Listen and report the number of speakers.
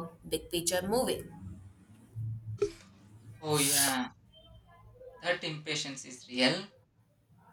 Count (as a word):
two